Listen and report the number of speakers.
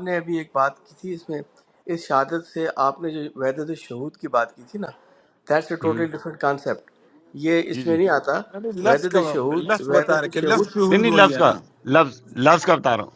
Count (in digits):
3